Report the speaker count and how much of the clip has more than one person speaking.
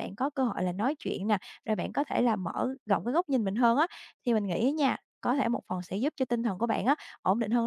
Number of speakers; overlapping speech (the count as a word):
one, no overlap